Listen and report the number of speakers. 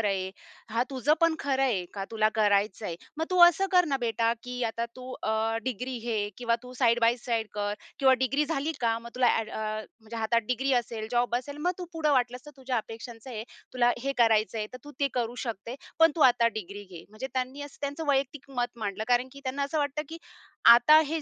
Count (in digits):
1